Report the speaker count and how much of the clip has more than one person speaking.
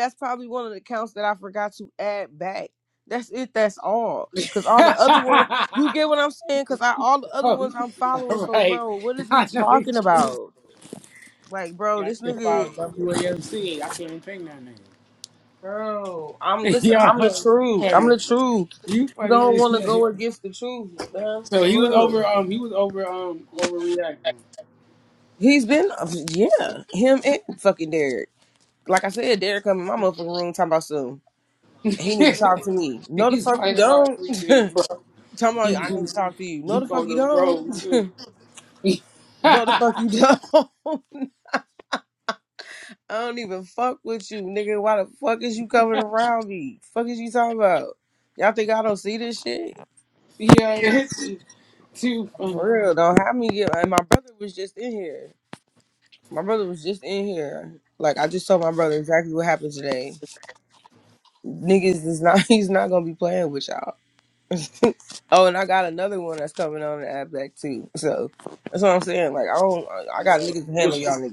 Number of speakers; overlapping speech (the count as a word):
two, about 13%